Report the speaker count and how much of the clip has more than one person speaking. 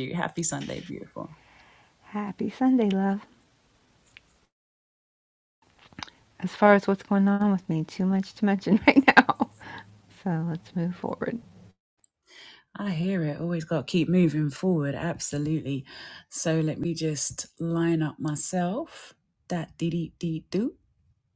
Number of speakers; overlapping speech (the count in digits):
2, no overlap